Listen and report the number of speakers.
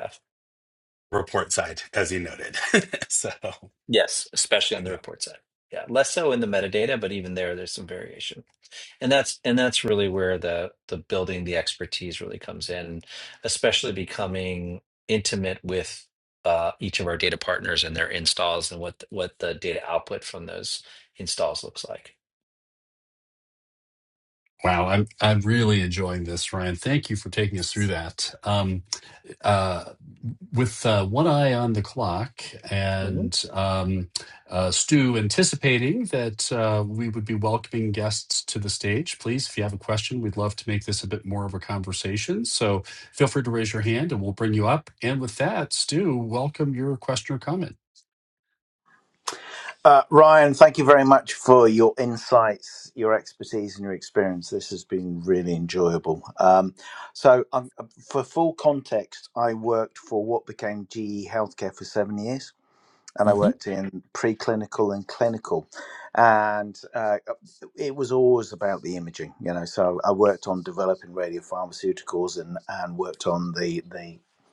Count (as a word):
four